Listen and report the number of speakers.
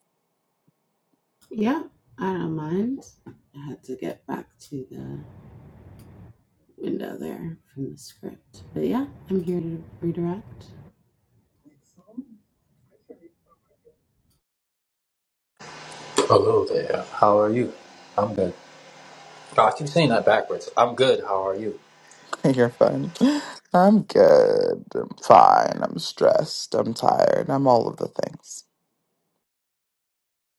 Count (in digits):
3